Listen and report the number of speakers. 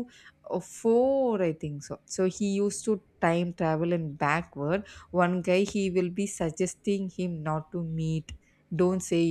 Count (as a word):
one